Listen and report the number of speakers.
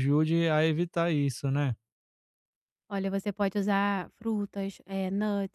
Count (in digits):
2